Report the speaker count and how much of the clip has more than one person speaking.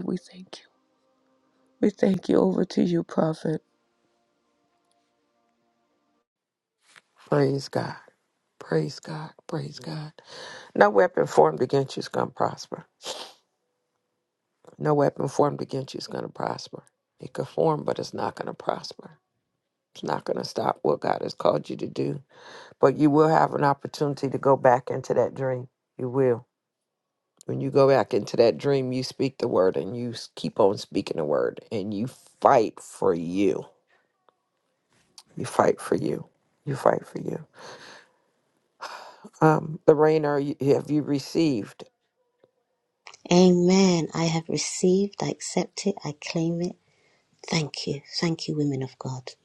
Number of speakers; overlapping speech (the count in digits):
3, no overlap